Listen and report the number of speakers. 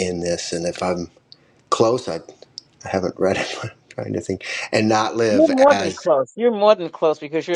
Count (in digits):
2